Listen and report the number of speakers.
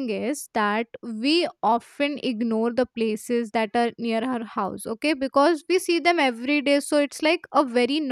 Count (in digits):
1